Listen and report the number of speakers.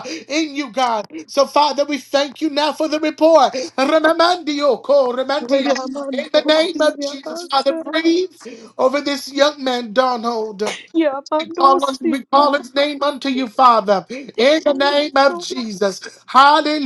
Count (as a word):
two